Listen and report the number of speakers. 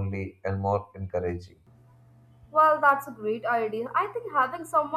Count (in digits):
2